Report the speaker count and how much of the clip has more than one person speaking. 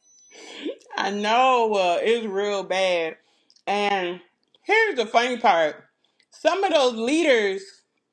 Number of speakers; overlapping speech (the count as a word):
one, no overlap